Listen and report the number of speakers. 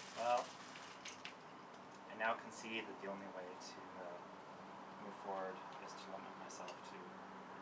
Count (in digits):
1